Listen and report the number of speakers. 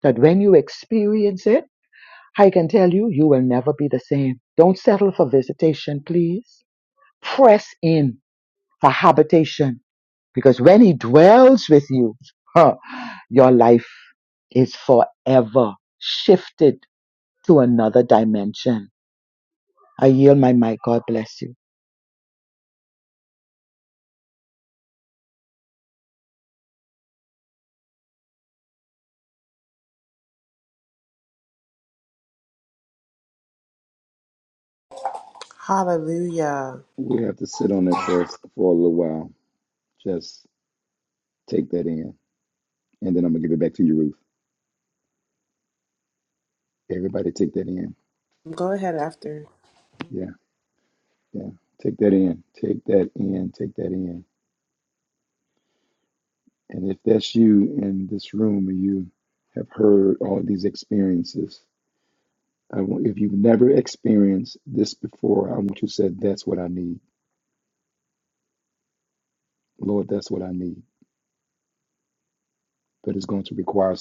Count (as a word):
three